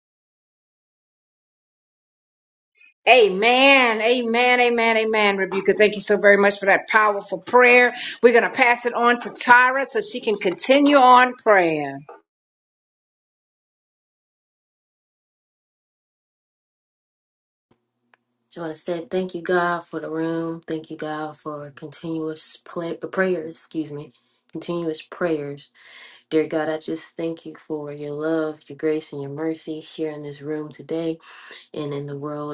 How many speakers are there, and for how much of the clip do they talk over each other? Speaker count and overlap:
2, no overlap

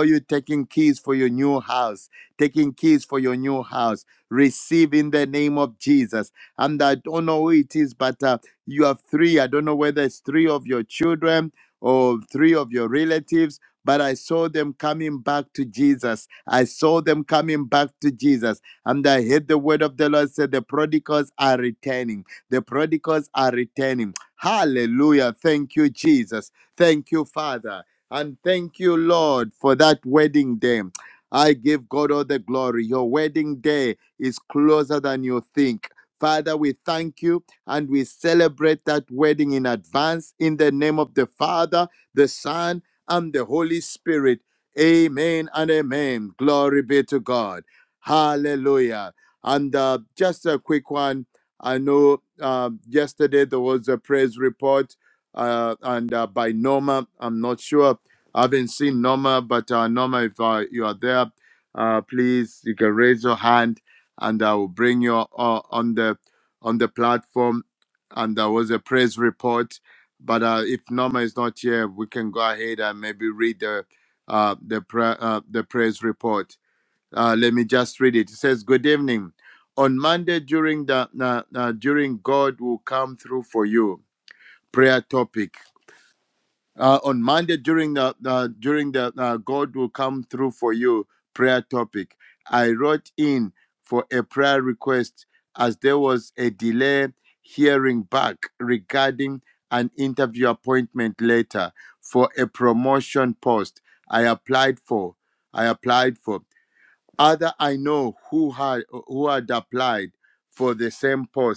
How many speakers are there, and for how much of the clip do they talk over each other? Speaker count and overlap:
1, no overlap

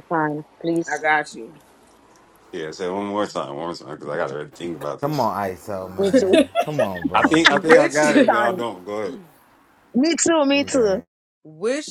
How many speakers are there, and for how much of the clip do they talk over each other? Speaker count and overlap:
4, about 20%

